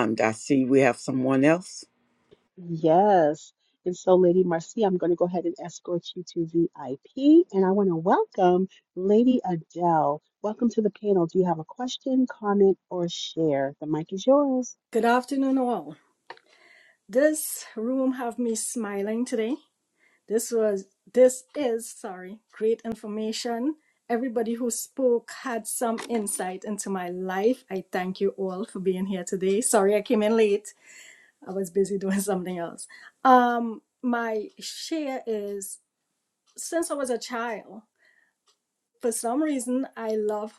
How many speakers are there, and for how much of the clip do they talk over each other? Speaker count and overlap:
3, no overlap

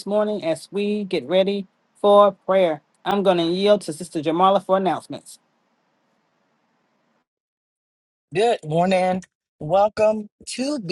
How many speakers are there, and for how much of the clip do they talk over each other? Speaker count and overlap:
2, no overlap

